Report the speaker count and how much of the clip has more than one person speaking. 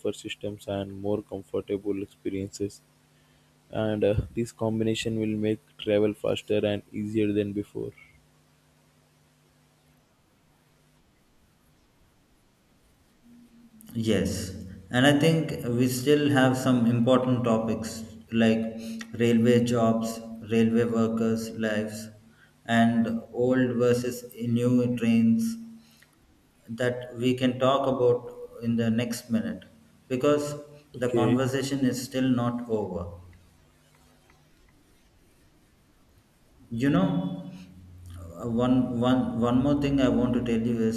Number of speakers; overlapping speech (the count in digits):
2, about 1%